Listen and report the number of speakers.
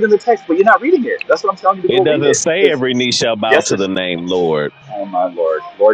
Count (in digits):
2